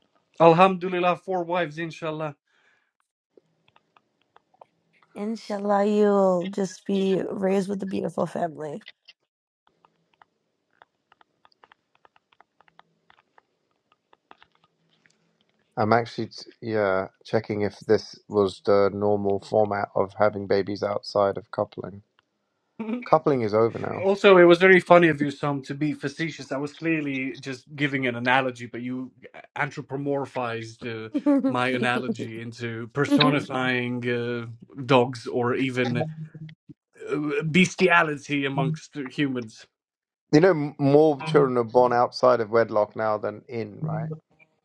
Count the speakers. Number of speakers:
3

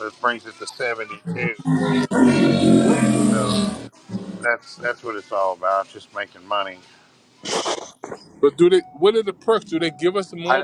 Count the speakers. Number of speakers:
2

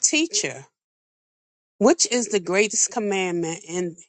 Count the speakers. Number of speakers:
1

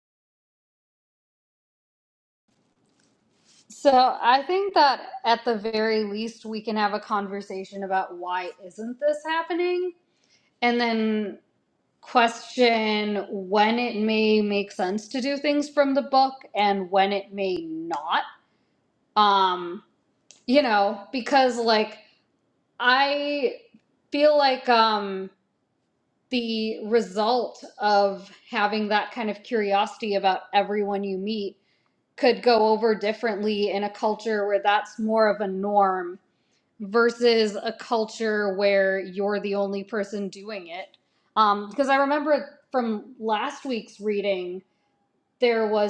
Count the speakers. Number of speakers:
1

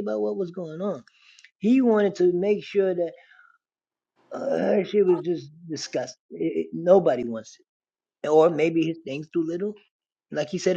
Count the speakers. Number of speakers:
1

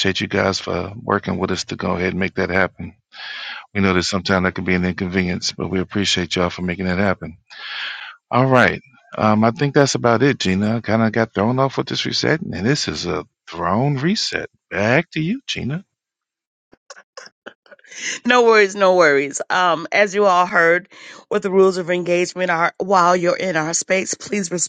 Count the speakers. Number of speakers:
2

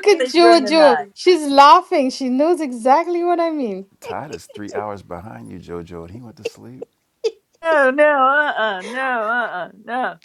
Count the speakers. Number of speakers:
3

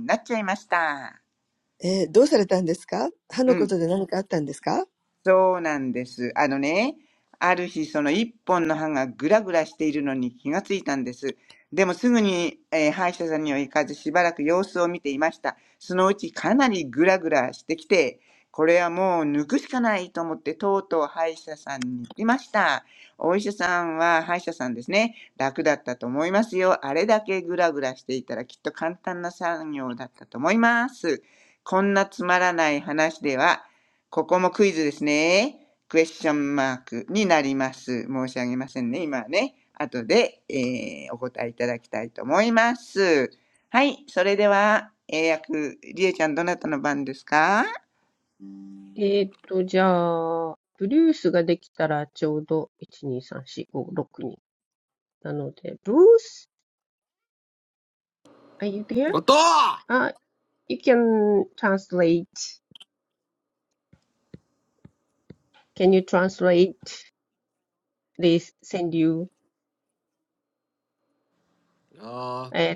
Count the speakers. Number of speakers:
4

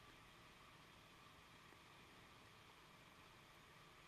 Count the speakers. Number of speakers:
0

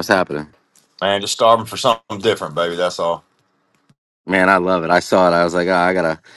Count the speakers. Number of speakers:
2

